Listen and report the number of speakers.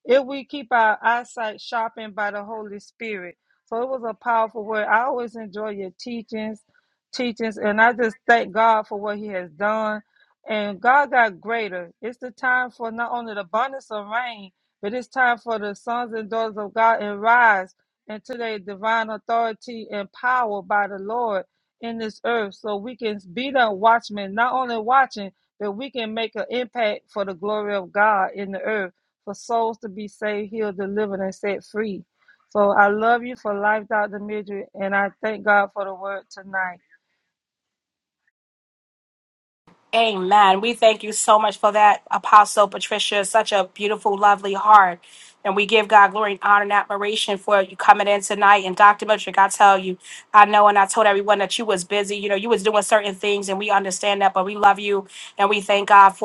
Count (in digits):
2